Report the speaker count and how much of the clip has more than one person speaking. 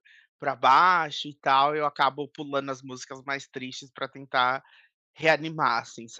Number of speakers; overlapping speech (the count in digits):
1, no overlap